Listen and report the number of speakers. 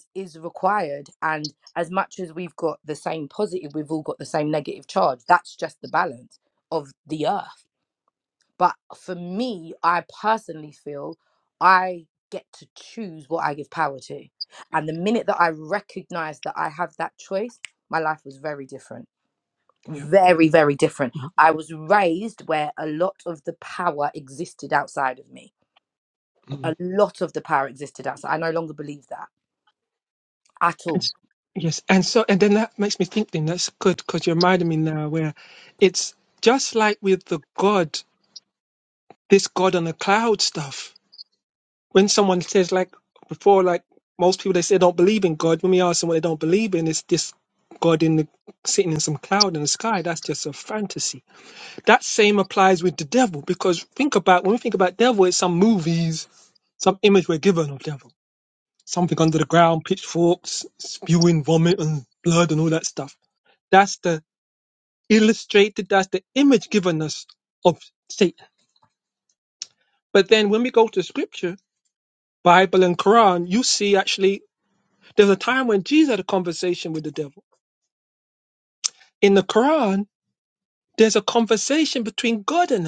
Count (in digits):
2